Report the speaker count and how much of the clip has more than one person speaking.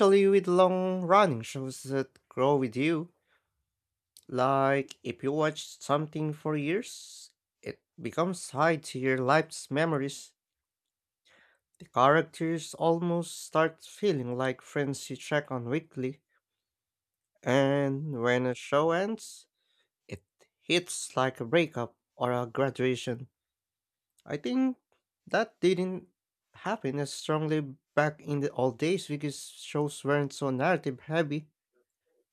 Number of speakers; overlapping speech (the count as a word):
one, no overlap